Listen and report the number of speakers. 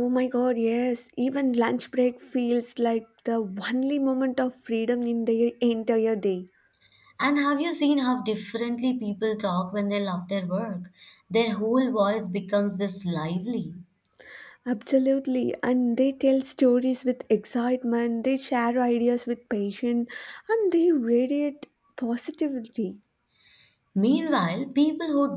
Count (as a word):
two